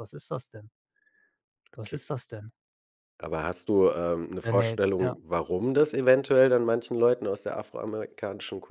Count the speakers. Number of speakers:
2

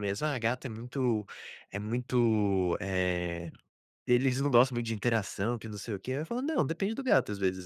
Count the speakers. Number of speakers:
1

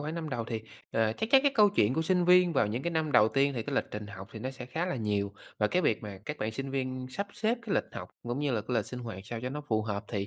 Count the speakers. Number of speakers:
1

